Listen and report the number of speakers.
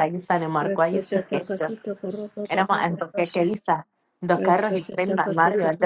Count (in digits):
2